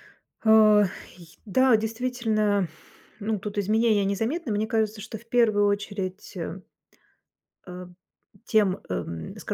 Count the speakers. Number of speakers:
1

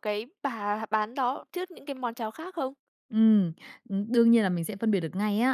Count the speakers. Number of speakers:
2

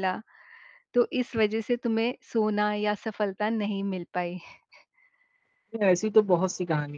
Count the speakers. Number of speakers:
2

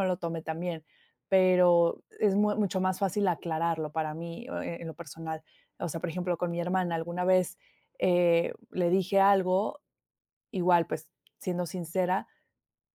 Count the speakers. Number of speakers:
1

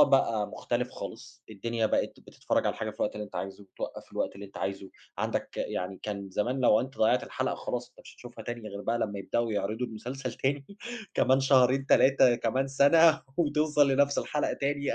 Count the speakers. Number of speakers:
1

